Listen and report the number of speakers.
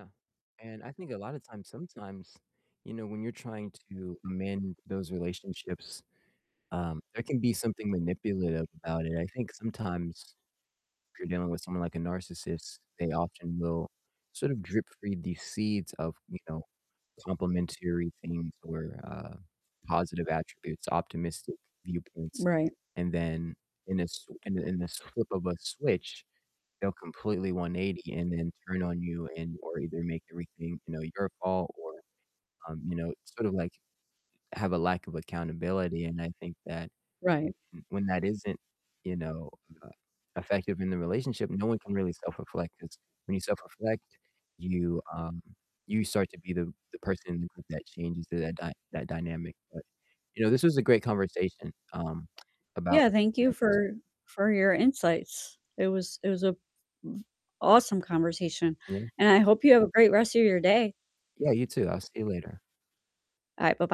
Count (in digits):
2